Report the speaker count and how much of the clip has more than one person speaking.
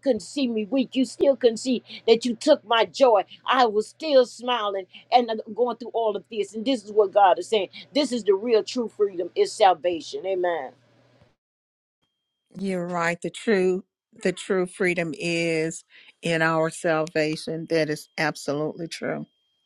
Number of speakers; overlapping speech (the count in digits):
2, no overlap